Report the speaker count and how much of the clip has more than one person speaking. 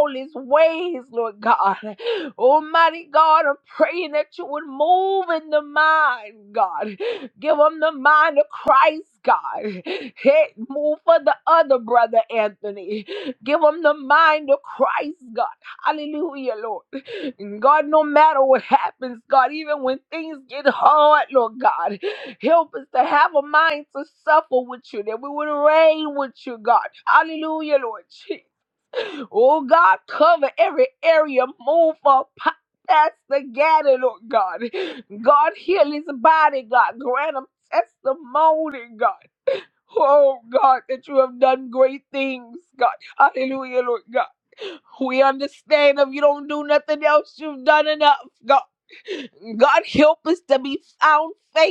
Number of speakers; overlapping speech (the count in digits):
1, no overlap